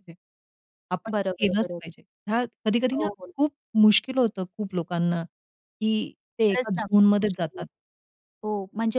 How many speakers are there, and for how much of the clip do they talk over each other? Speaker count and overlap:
two, about 18%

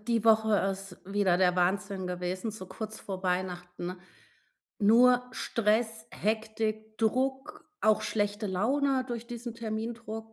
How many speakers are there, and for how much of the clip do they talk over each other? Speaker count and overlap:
one, no overlap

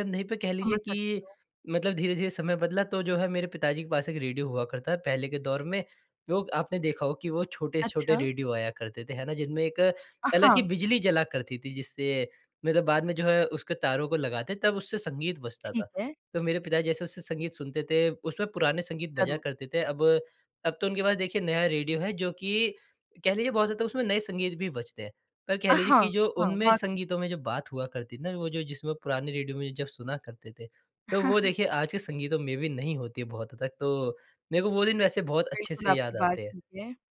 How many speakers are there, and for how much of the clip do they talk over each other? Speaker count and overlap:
two, about 11%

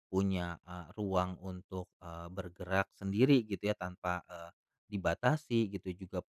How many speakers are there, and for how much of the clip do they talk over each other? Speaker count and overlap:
one, no overlap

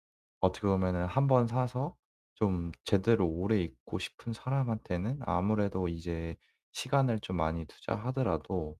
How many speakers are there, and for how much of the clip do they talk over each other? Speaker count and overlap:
one, no overlap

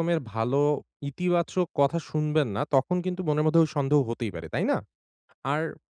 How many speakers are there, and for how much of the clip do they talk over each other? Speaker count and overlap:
one, no overlap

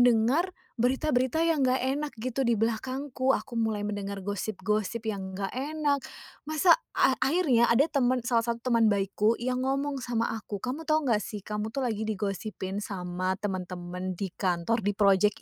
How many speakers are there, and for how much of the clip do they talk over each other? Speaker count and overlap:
one, no overlap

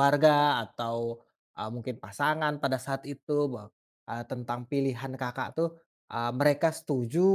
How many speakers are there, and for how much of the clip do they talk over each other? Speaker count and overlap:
one, no overlap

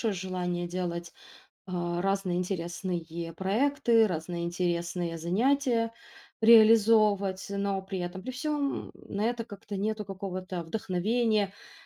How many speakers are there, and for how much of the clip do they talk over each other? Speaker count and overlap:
one, no overlap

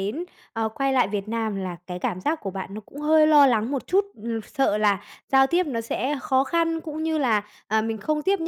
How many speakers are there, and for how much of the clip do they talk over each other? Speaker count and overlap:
one, no overlap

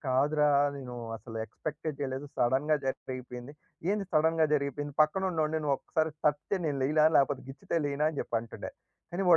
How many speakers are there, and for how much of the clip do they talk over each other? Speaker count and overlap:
one, no overlap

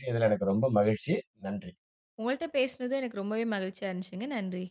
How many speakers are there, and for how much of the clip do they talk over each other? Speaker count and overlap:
two, no overlap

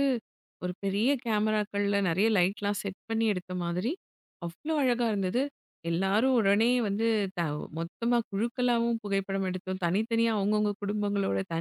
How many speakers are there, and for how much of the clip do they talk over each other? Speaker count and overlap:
one, no overlap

